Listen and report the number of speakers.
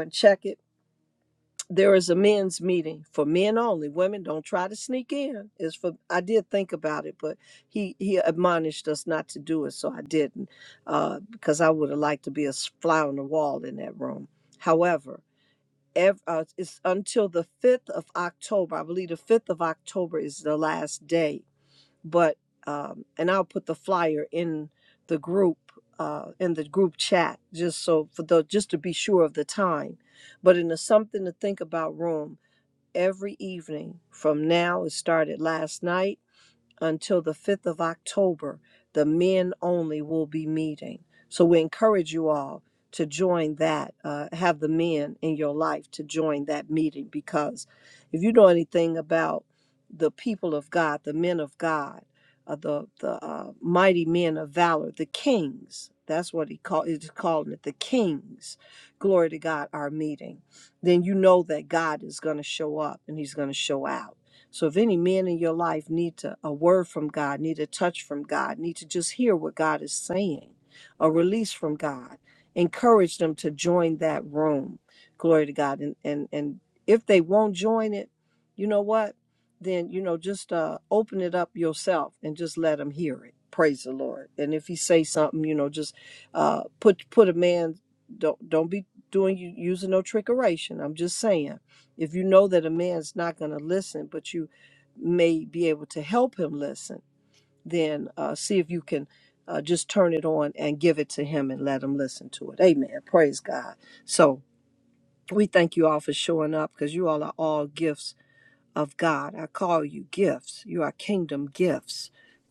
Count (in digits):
1